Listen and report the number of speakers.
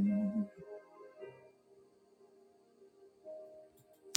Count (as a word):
zero